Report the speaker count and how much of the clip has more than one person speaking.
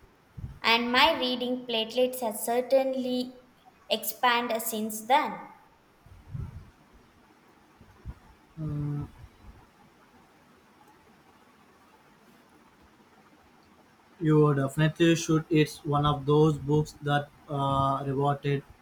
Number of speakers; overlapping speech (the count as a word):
two, no overlap